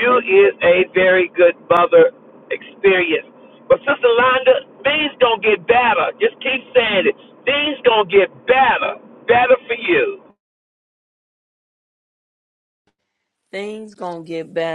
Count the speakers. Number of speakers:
two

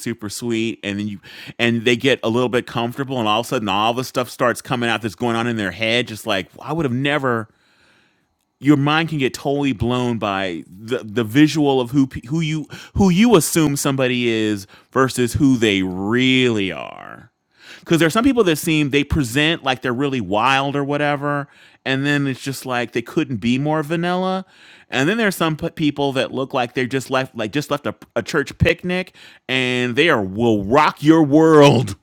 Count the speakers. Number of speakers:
one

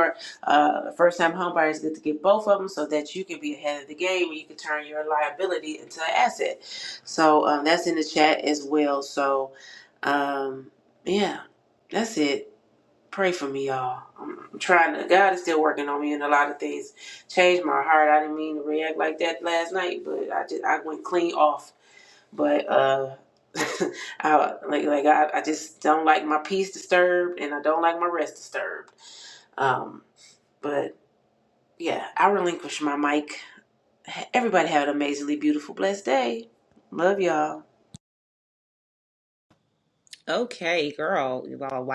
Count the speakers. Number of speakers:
two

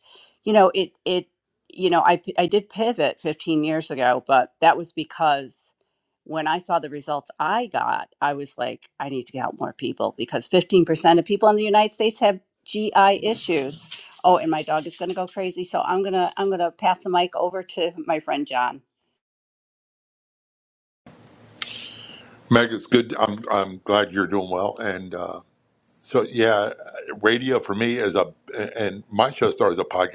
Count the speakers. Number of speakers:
two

